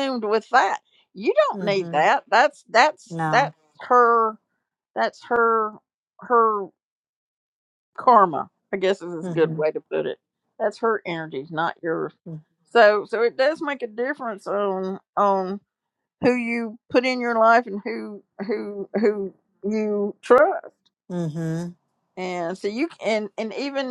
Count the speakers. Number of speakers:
2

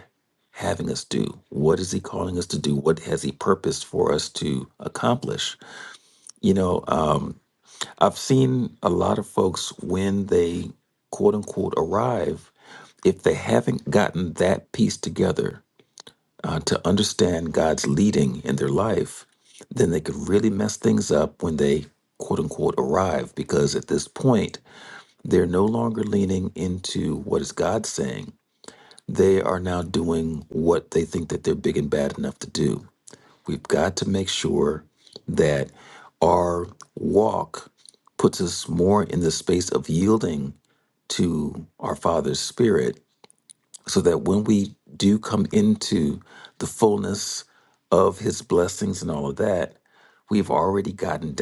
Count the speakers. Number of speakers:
1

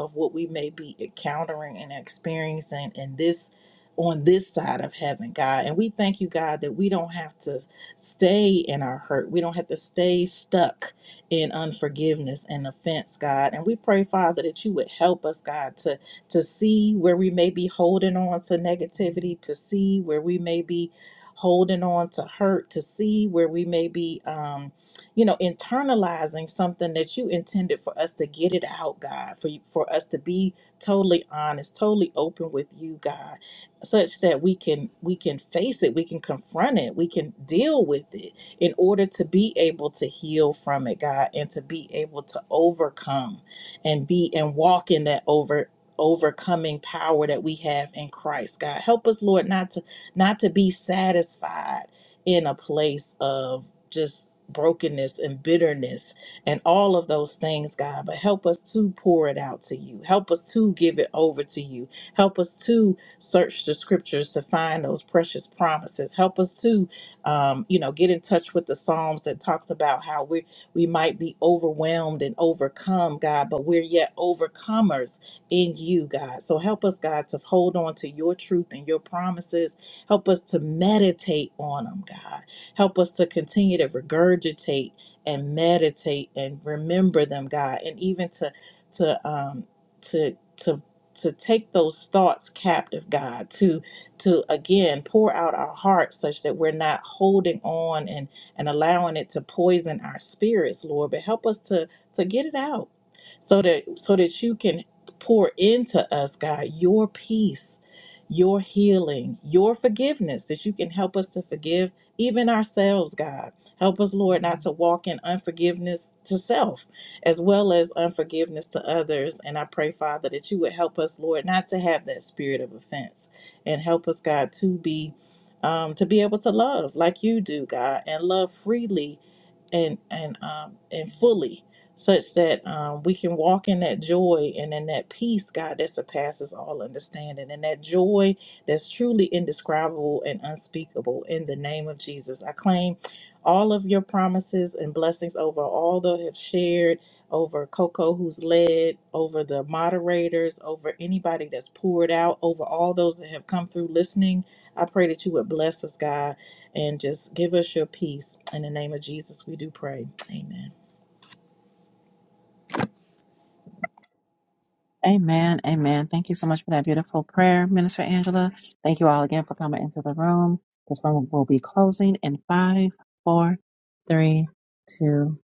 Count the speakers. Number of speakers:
2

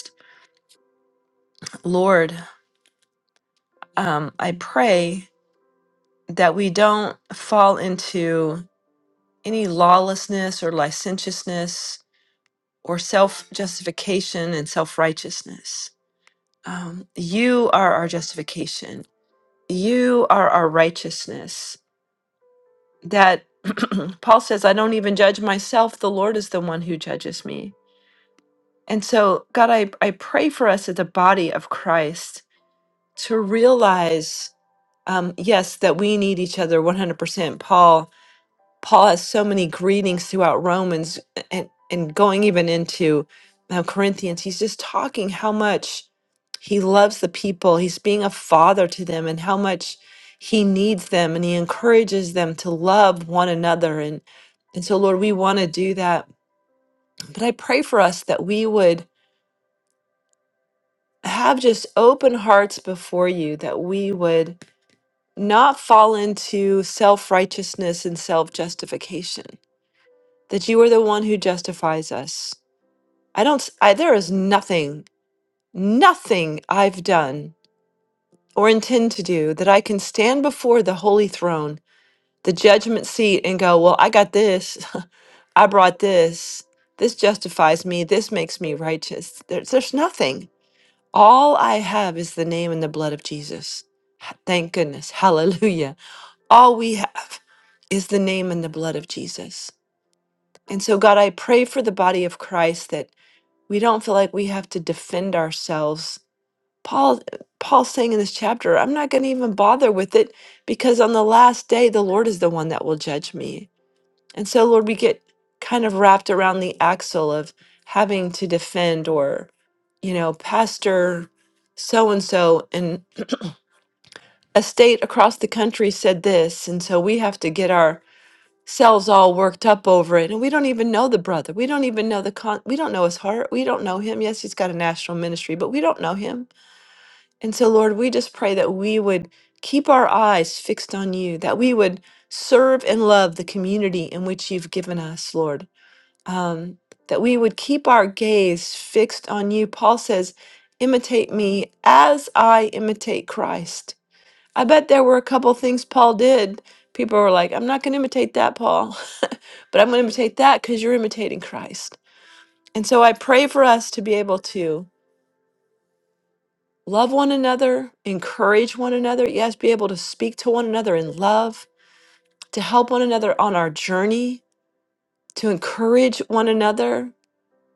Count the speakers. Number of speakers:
1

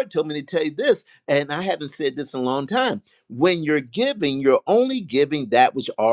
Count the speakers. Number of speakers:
1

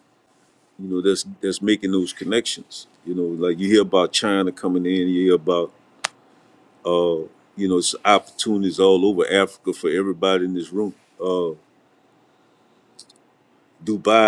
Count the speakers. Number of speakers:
1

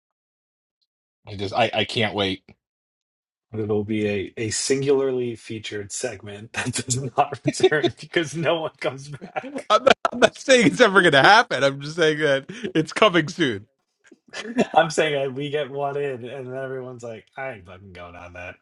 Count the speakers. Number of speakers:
3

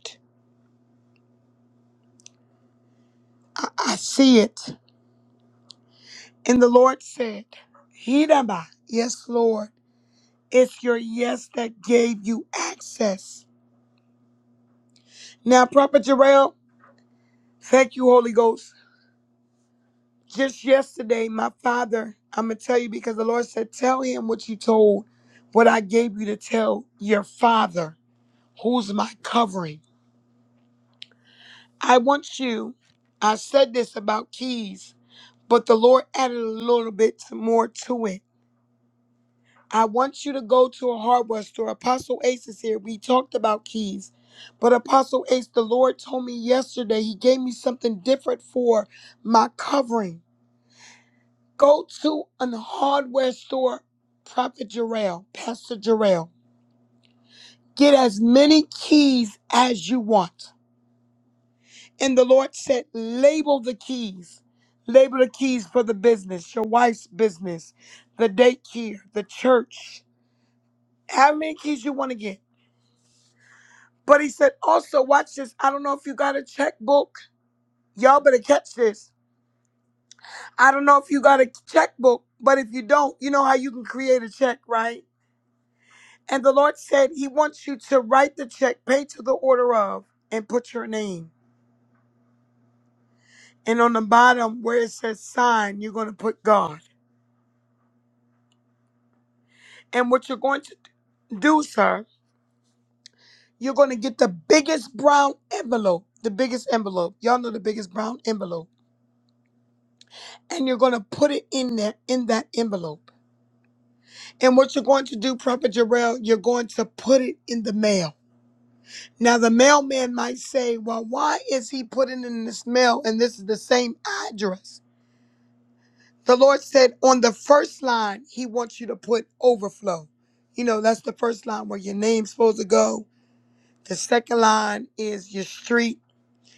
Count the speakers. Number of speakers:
1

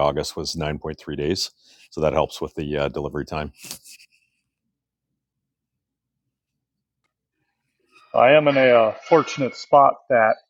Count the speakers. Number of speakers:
2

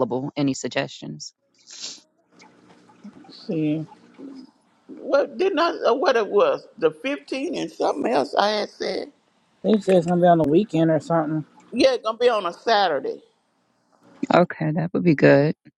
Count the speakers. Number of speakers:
3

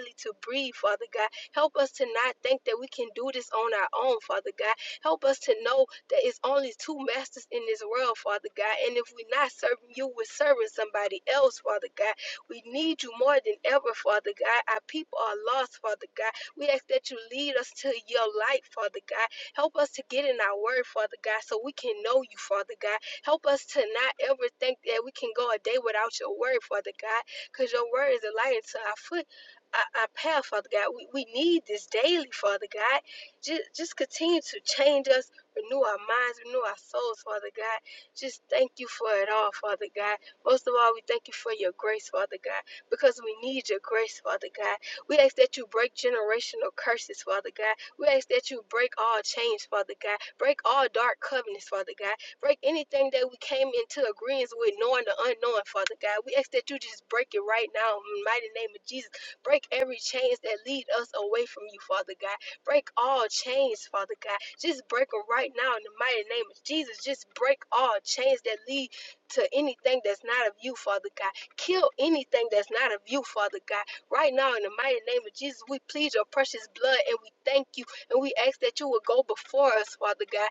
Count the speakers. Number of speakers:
1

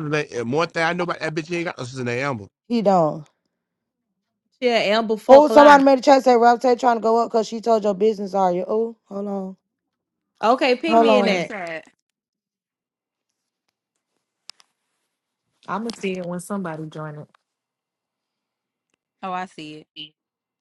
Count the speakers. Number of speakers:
4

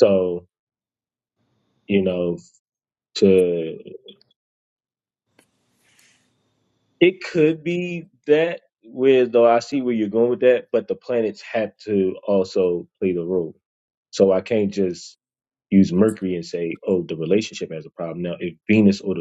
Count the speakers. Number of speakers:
1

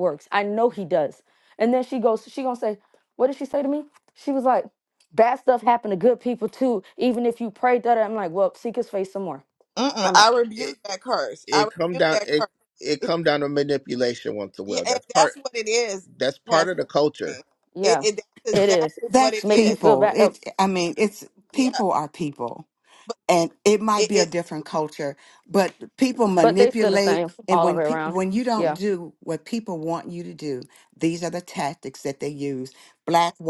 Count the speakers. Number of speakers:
4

